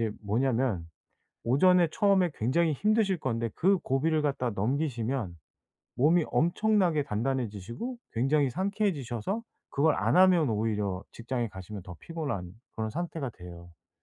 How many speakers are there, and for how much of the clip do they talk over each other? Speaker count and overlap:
1, no overlap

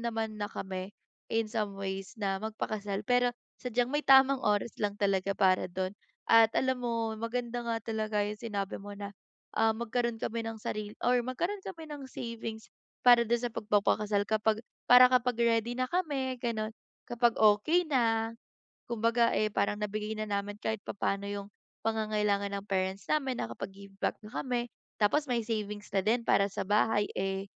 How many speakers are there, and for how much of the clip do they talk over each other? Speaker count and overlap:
1, no overlap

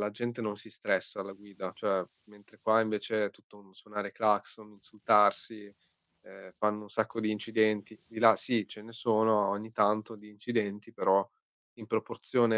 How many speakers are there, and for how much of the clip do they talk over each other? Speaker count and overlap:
1, no overlap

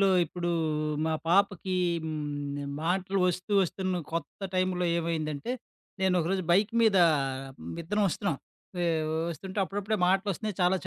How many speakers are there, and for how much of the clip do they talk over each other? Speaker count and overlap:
1, no overlap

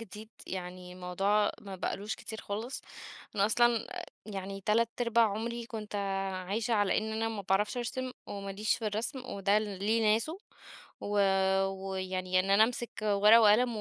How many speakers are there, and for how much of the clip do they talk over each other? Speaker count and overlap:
1, no overlap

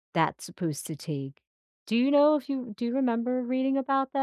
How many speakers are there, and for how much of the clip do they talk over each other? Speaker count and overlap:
1, no overlap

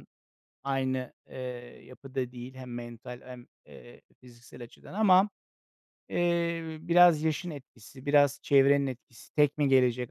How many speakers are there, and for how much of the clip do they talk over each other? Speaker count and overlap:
1, no overlap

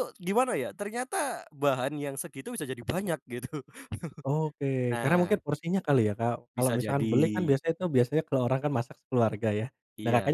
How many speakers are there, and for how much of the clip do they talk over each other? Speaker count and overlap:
2, about 17%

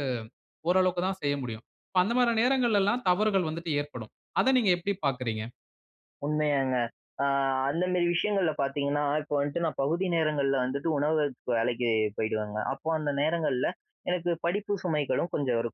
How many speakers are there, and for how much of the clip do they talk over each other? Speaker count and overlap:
2, no overlap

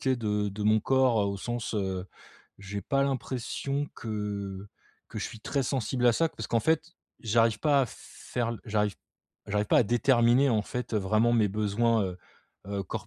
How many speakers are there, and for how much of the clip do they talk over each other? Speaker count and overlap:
1, no overlap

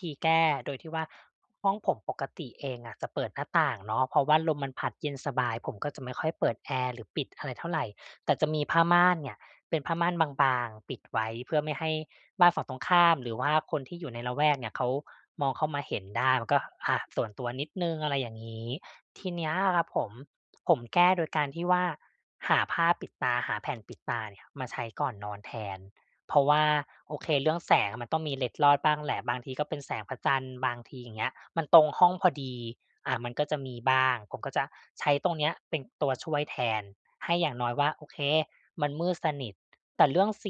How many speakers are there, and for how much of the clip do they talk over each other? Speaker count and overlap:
1, no overlap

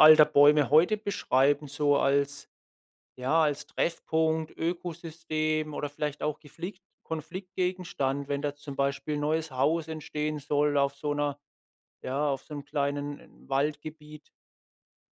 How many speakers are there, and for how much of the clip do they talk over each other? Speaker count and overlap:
1, no overlap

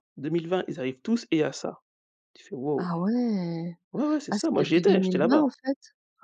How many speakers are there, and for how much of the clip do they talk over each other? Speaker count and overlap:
2, about 21%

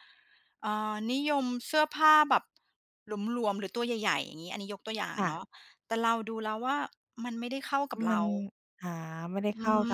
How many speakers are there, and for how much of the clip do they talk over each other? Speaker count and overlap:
2, about 5%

